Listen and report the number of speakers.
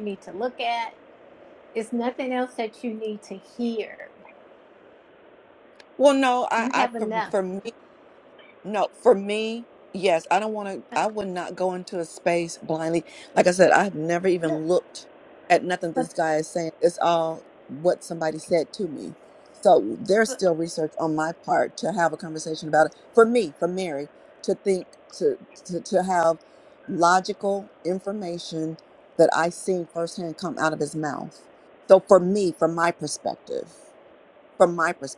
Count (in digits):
2